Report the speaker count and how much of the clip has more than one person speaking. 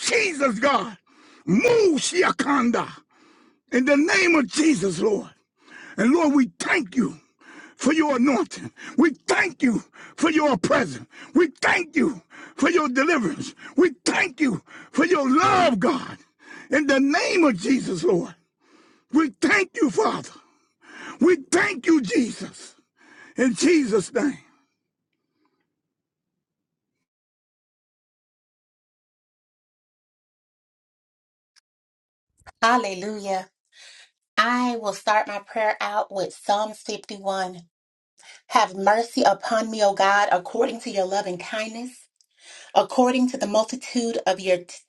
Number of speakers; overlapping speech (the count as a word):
two, no overlap